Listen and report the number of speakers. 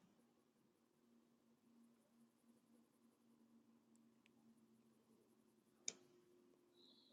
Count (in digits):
0